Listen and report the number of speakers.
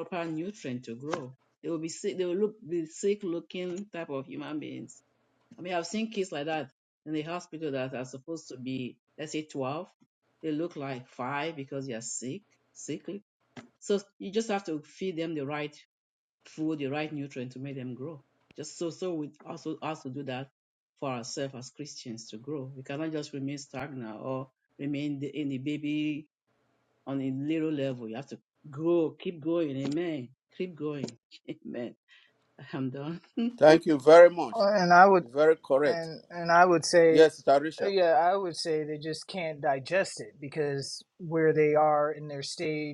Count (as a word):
three